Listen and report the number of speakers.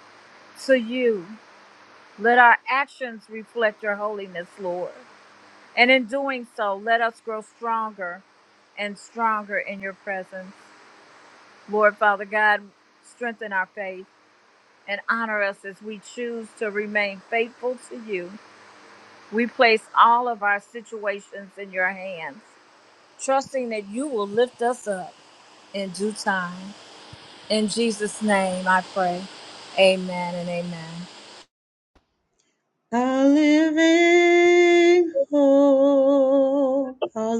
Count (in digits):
2